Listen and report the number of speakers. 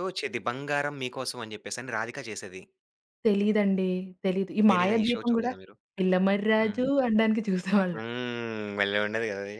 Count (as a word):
two